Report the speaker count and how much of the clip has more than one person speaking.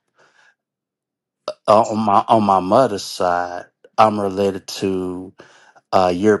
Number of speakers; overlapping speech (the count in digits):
1, no overlap